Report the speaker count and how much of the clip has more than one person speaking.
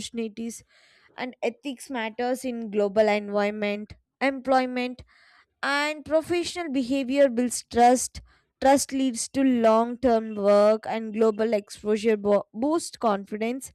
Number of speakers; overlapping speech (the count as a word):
one, no overlap